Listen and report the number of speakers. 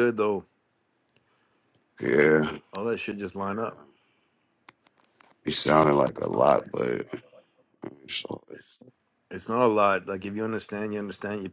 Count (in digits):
2